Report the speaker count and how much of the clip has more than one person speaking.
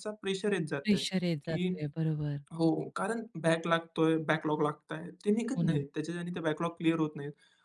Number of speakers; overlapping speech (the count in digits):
2, about 10%